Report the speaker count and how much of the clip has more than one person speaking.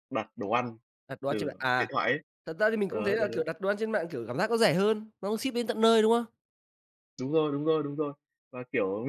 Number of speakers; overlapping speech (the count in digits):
2, about 12%